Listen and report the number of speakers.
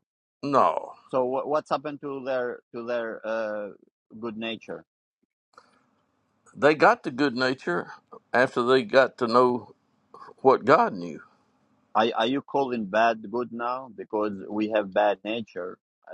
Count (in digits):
2